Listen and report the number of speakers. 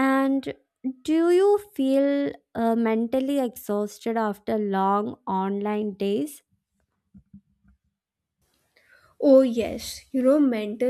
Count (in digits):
2